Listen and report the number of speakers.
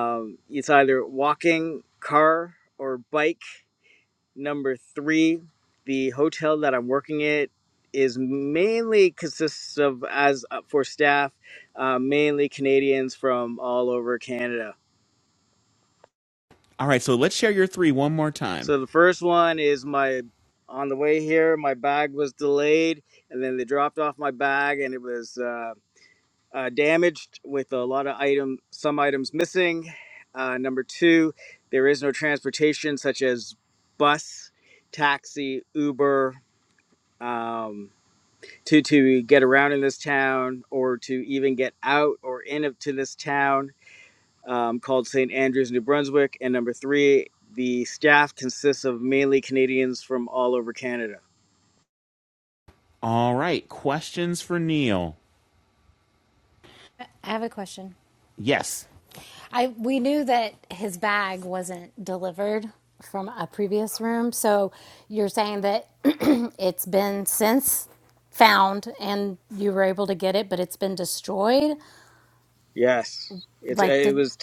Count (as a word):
three